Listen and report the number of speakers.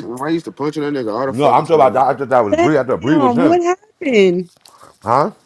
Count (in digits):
3